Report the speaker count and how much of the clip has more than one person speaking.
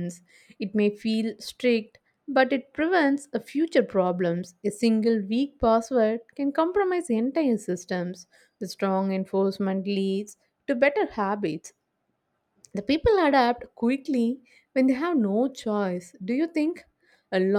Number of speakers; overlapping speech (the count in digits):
1, no overlap